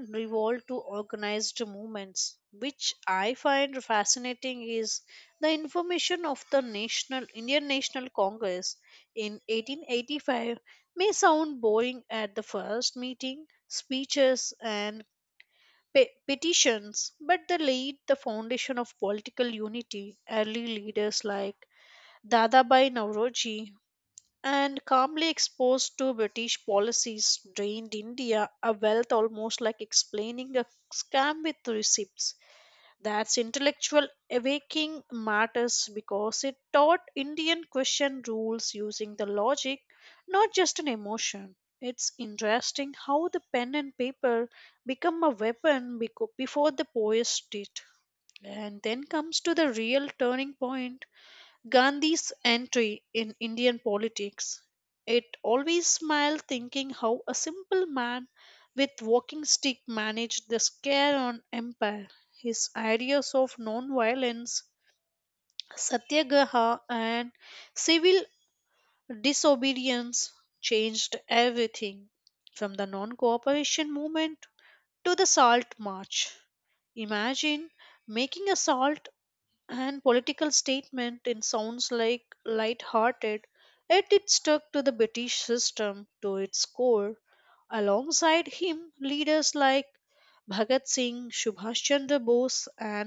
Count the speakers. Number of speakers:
1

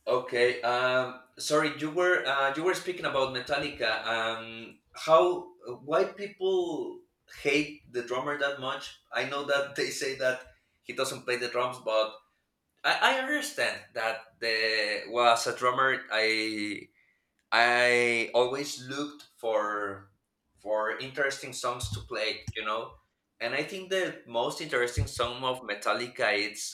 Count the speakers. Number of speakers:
1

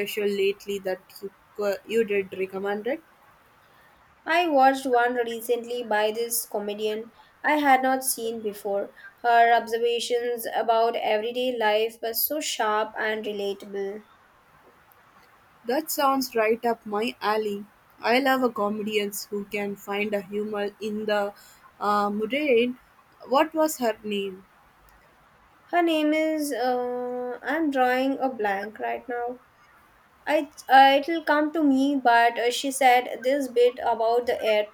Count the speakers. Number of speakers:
2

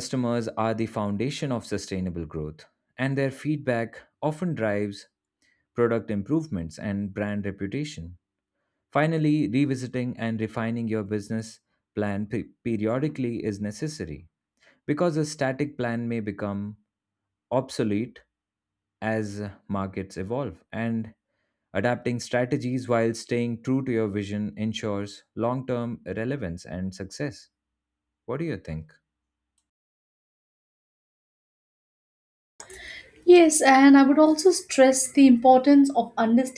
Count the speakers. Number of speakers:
2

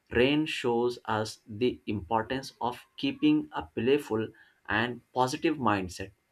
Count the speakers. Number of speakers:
1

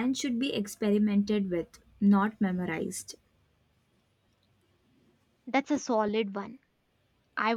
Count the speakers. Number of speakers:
2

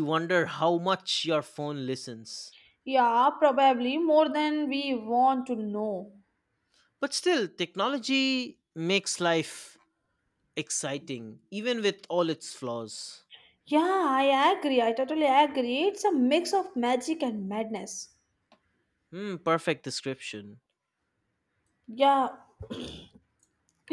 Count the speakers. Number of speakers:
2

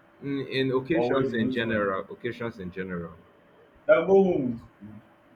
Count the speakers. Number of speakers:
2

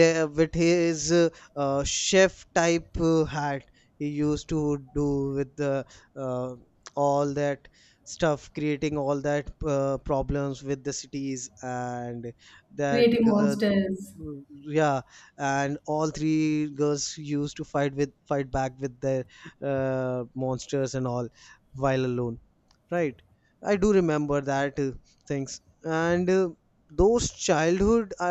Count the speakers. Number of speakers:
2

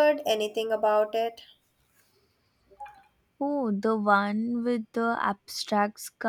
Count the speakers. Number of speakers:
2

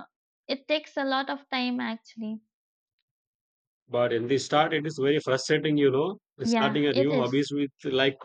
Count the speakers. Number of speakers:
2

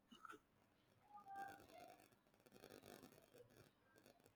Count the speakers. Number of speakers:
0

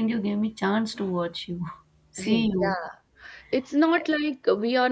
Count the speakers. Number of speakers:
2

